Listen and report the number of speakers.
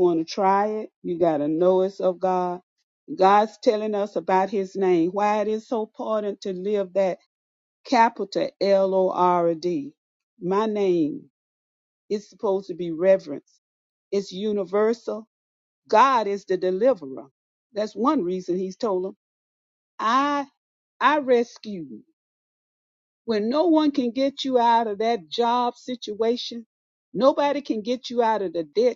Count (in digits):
1